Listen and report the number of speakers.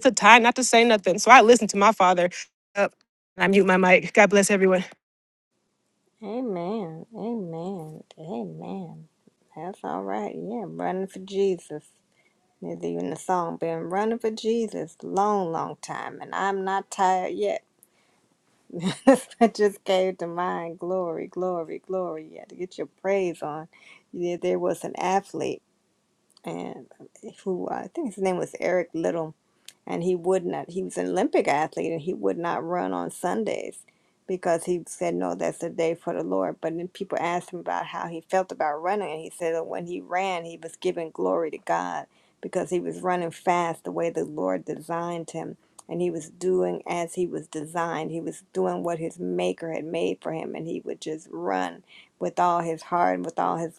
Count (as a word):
two